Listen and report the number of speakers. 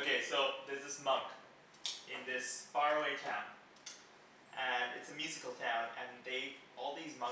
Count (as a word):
one